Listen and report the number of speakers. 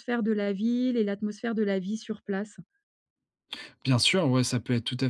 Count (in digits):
2